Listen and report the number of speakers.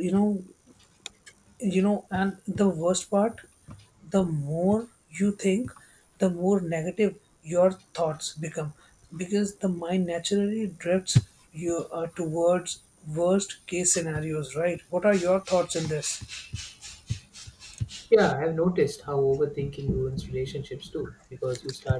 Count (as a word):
two